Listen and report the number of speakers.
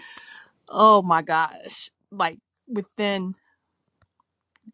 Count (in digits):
1